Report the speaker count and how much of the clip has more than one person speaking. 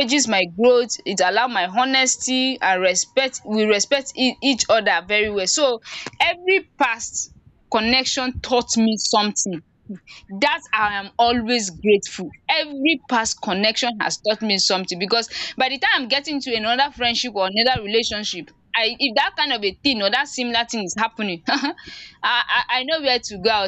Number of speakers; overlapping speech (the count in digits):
1, no overlap